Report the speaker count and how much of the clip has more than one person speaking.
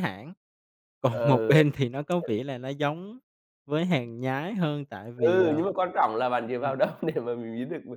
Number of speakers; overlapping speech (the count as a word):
two, about 15%